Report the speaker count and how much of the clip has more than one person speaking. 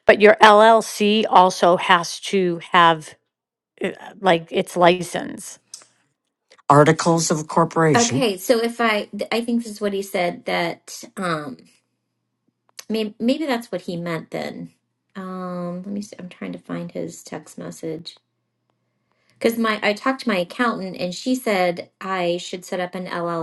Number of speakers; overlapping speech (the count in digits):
3, about 1%